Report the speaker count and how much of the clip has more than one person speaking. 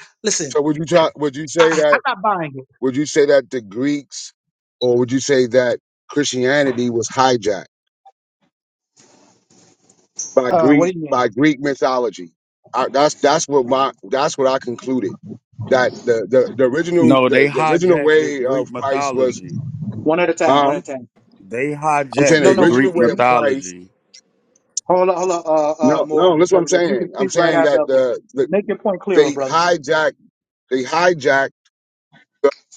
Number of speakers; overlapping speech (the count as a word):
three, about 24%